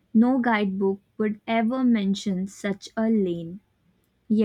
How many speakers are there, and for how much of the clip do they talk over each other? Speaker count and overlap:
1, no overlap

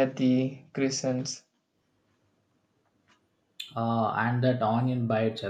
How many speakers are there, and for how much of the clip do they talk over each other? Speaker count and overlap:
2, no overlap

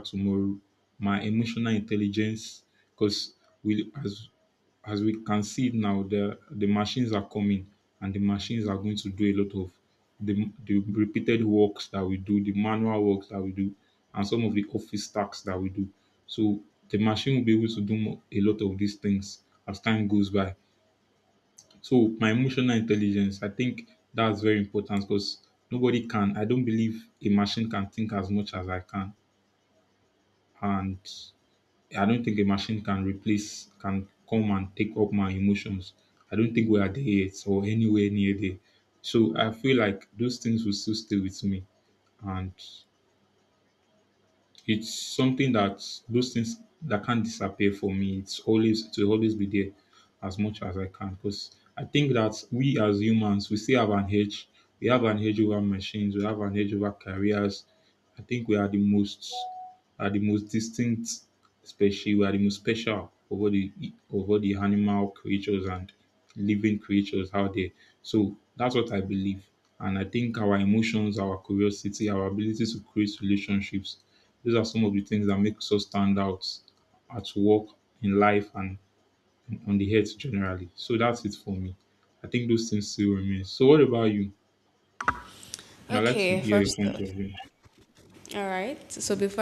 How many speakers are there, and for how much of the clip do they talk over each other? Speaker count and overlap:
2, about 1%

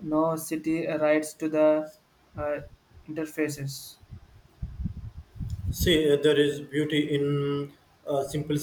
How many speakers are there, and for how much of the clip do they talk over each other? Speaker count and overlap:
2, no overlap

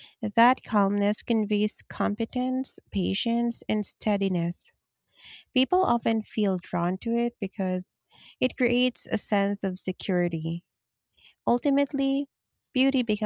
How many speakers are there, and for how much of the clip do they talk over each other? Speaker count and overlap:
1, no overlap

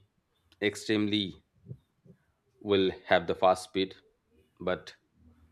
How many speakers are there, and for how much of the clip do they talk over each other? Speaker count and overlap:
1, no overlap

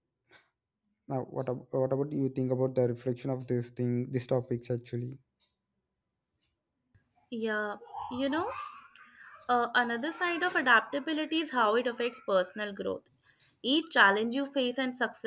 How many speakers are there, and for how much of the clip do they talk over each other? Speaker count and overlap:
2, no overlap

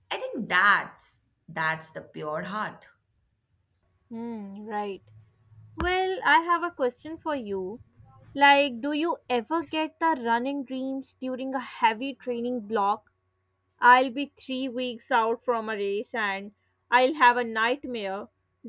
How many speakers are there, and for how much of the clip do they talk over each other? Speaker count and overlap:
2, no overlap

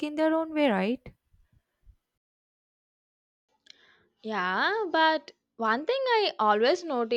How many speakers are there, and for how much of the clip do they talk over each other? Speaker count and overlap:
2, no overlap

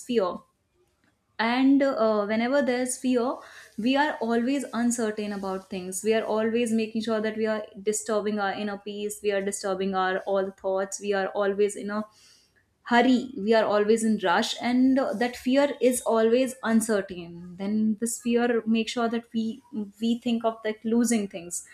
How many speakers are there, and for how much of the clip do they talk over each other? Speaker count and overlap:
1, no overlap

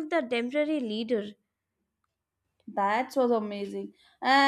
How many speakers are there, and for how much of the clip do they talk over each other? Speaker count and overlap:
2, no overlap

